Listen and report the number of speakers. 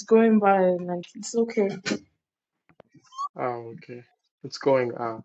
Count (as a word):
two